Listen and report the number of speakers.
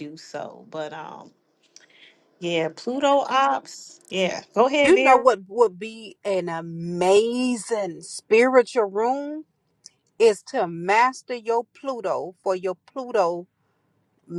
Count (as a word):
two